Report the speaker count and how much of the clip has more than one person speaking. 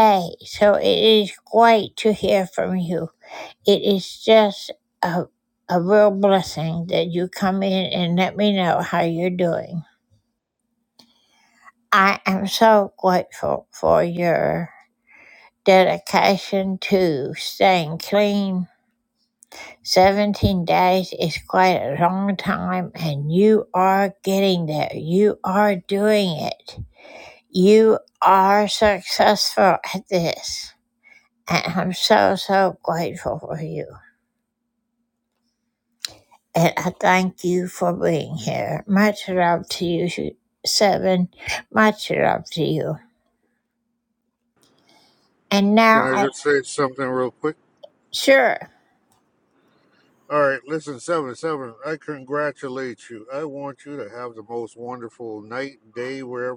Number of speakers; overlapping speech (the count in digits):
2, about 1%